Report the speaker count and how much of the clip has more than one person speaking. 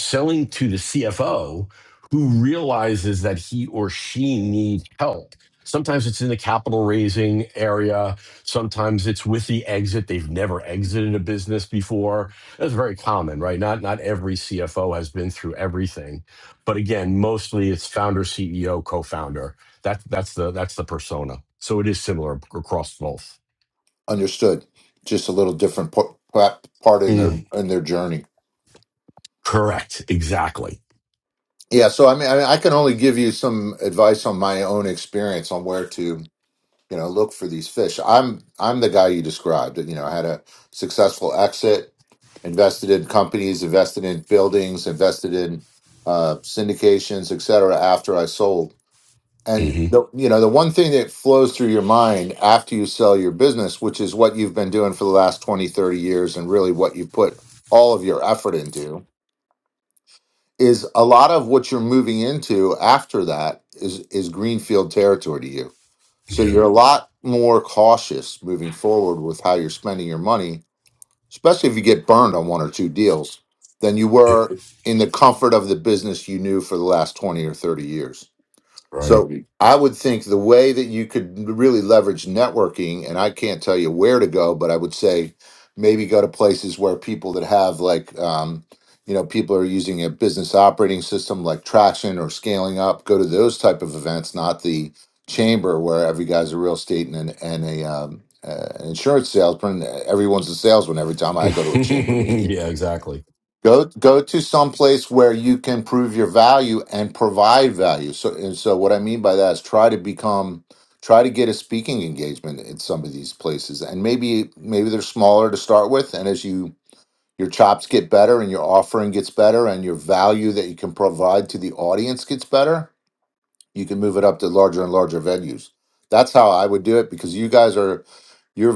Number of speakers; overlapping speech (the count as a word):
two, about 2%